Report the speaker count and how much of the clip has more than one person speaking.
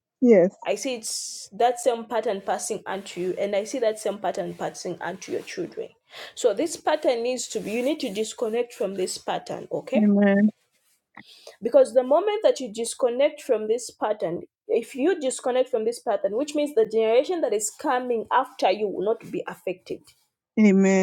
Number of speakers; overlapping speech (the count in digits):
2, under 1%